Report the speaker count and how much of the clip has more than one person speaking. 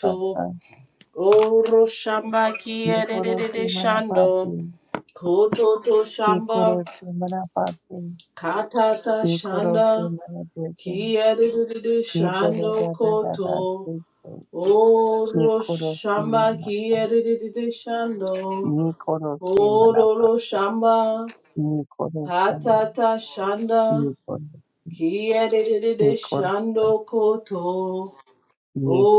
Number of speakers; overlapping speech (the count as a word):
two, about 27%